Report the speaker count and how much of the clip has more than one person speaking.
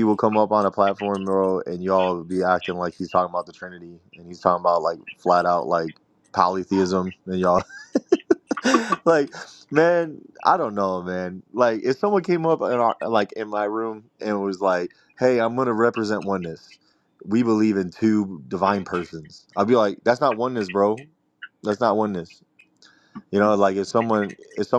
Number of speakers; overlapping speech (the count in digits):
1, no overlap